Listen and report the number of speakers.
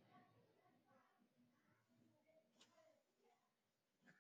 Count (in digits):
0